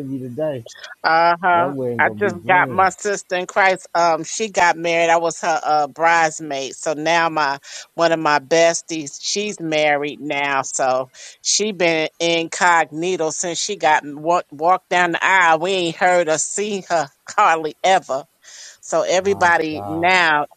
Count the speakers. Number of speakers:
2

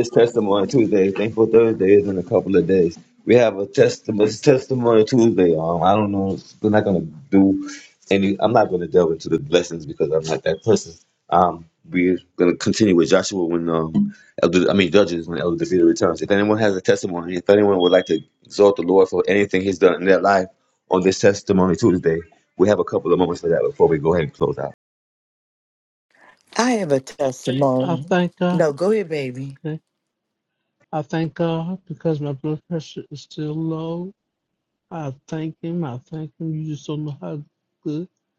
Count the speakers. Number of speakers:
3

